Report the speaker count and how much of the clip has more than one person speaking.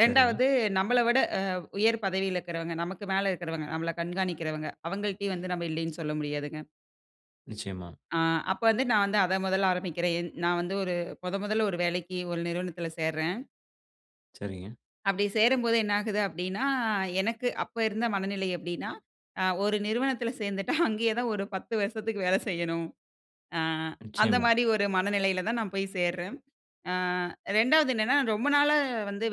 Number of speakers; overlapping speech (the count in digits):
2, about 2%